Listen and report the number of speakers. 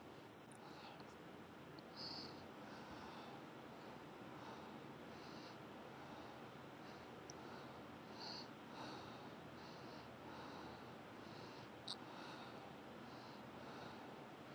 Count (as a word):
zero